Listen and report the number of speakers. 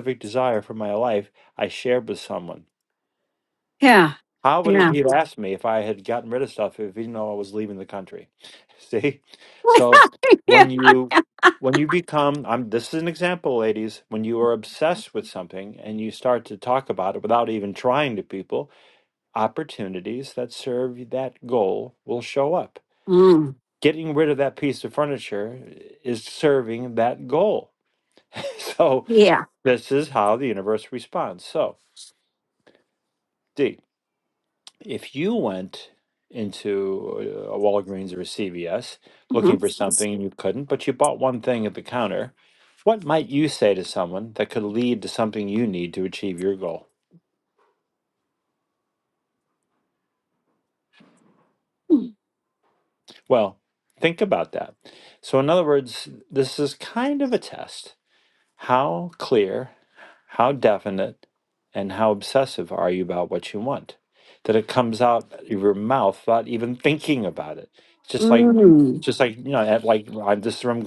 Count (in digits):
2